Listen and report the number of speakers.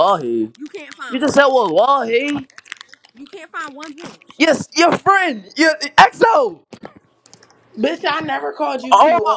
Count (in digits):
3